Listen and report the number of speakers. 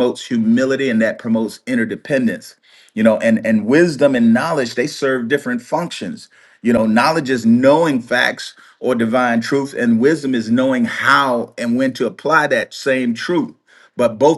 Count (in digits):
1